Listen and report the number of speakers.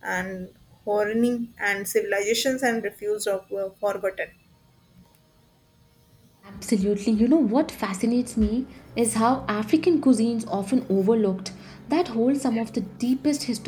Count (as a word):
two